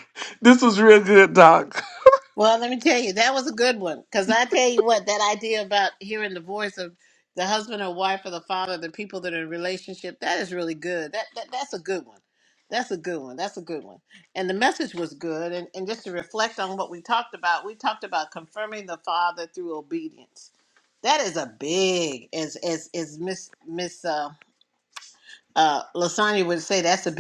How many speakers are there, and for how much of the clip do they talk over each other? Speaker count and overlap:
2, no overlap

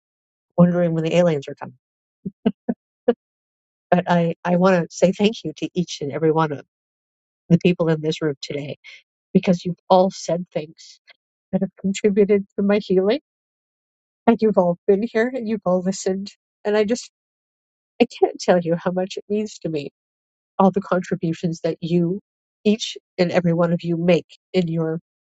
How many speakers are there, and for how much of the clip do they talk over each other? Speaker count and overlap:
1, no overlap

